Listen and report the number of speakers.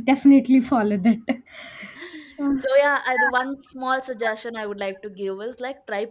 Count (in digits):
2